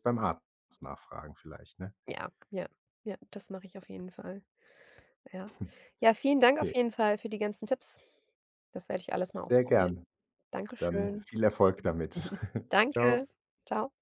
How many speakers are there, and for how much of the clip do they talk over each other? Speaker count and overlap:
two, about 9%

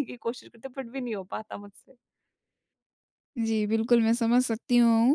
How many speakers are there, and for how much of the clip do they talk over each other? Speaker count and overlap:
two, no overlap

